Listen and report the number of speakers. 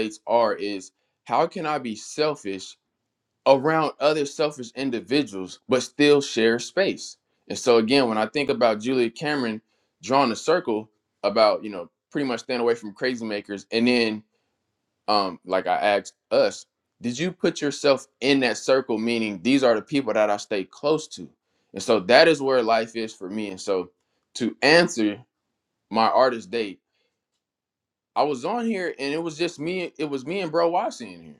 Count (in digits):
1